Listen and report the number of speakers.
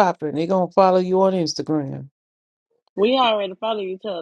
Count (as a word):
two